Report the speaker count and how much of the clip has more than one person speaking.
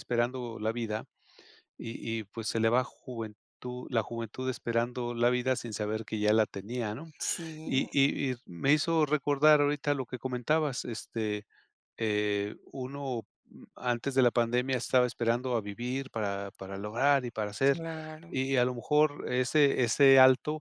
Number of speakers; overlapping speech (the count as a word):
two, about 2%